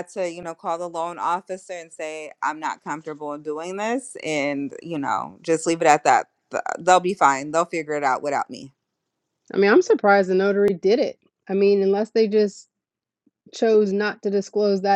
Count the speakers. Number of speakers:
2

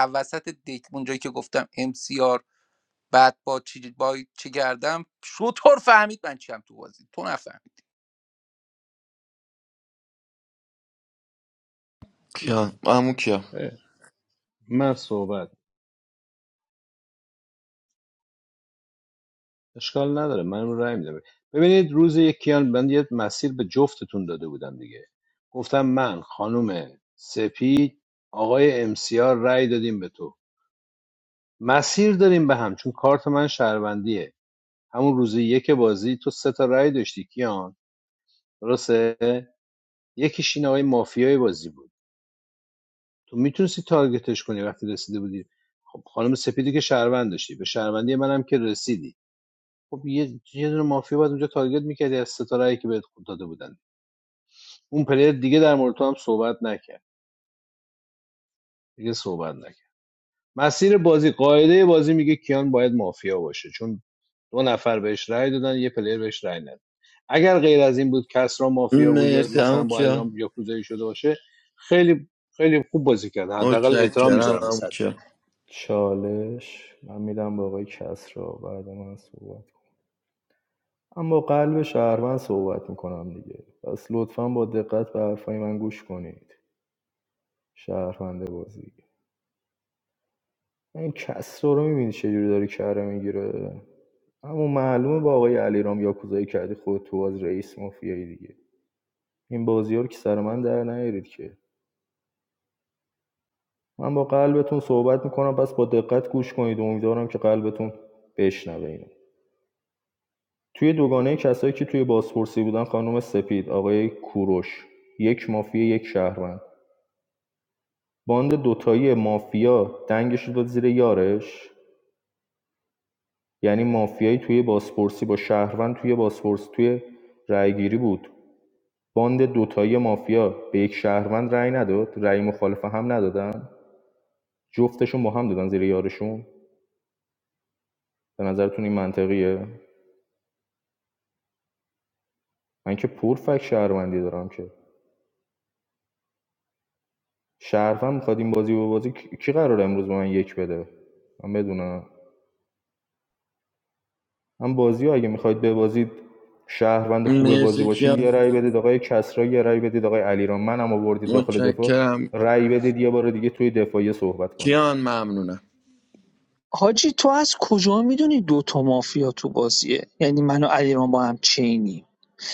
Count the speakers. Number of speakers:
5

